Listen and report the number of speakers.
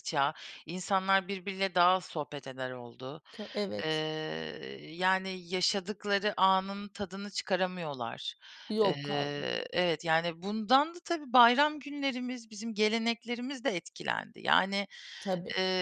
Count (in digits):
2